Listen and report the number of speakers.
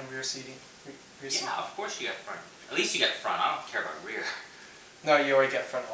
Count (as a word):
two